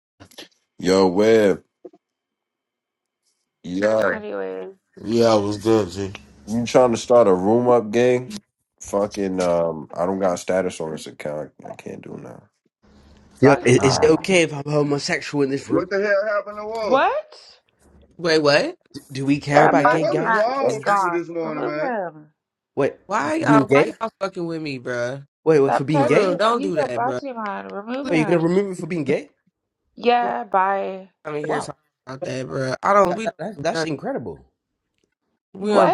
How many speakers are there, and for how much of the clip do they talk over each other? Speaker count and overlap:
6, about 21%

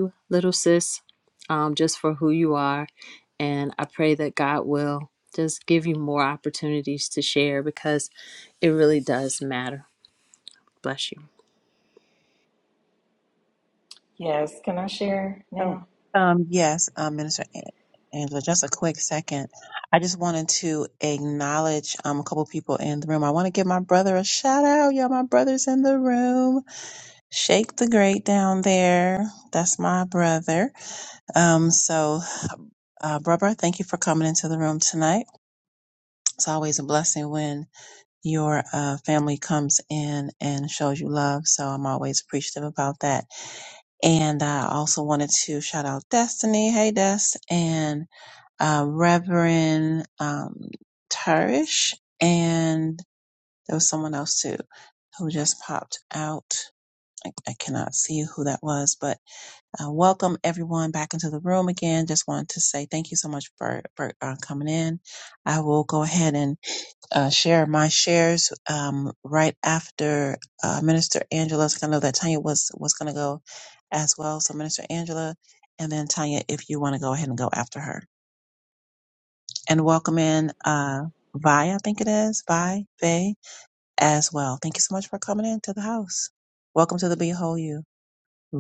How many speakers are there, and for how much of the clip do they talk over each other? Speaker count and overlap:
3, under 1%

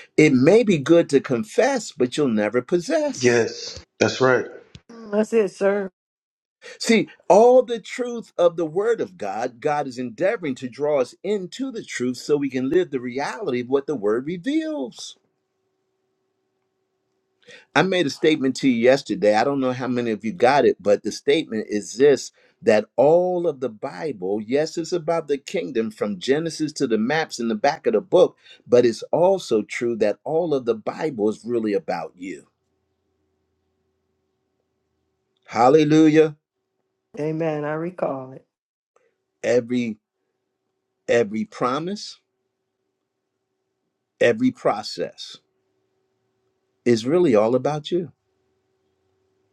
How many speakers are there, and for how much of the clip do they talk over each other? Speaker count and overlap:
3, no overlap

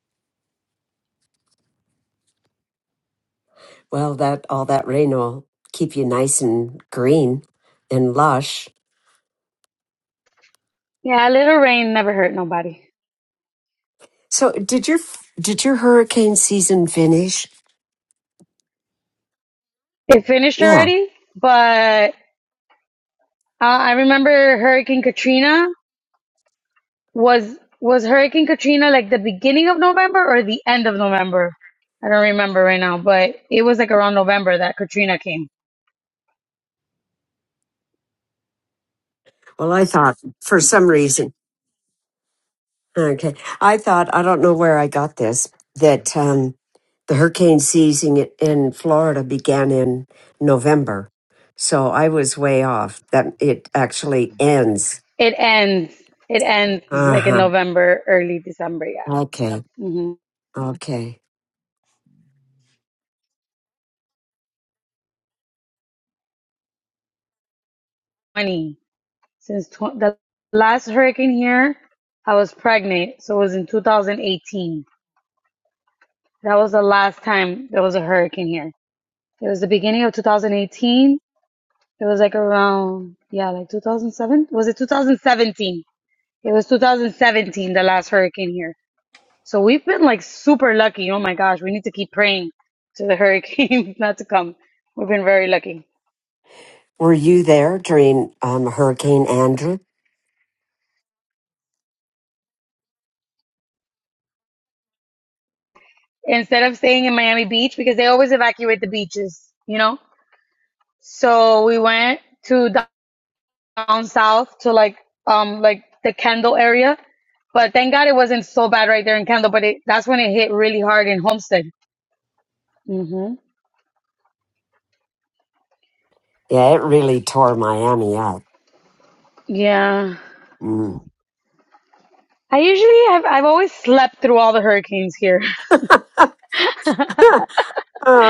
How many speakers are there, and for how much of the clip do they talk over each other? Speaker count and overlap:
2, about 1%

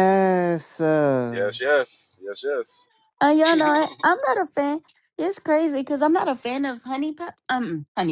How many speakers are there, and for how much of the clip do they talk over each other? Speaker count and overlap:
3, about 5%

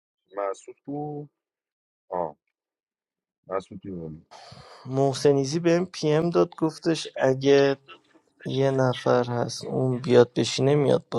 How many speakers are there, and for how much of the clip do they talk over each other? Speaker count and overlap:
2, no overlap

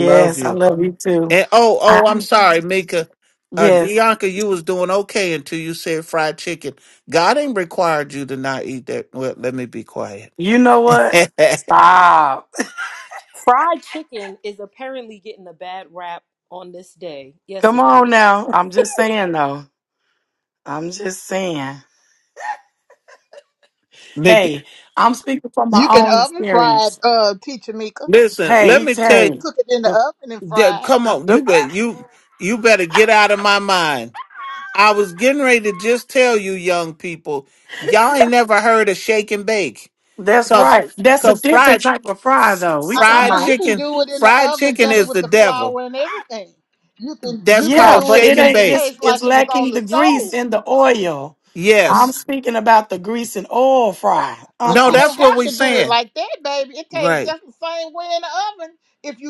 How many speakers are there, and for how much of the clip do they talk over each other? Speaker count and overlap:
4, about 21%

